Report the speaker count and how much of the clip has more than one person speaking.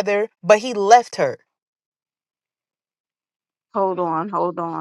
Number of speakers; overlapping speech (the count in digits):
2, no overlap